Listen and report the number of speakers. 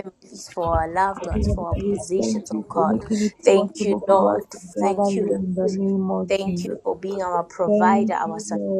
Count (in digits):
2